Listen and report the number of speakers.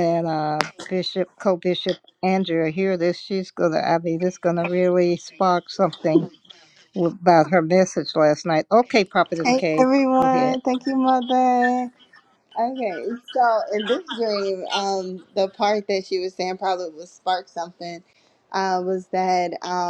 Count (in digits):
2